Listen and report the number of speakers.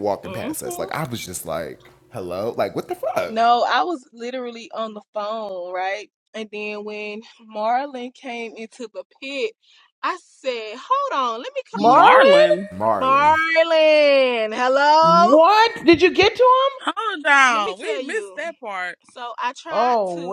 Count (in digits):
4